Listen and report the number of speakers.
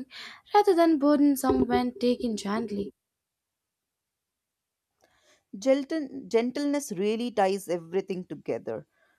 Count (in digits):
2